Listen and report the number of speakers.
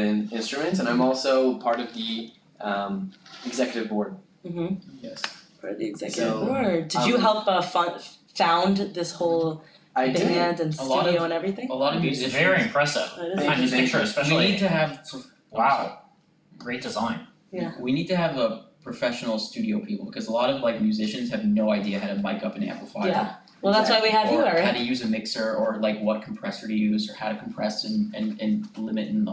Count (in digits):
4